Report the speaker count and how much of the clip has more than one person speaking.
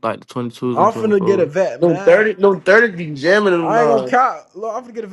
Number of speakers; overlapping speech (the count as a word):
three, about 34%